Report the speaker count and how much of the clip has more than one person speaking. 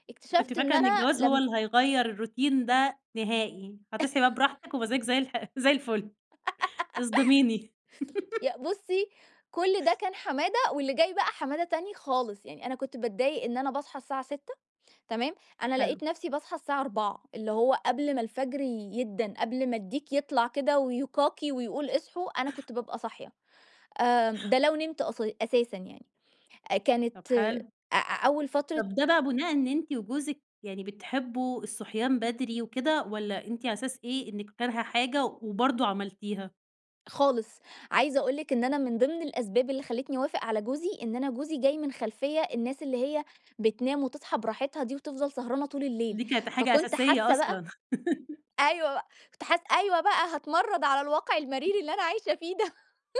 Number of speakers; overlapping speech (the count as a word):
two, about 5%